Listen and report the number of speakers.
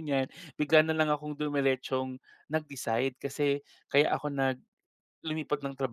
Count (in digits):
1